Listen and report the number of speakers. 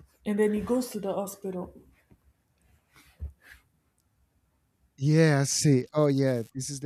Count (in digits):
2